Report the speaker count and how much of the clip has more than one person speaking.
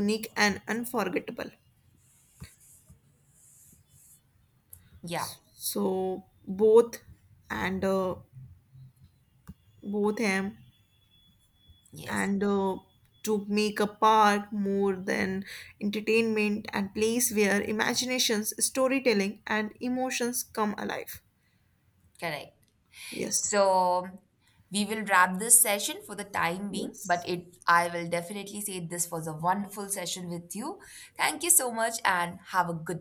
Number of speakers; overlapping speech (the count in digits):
2, about 1%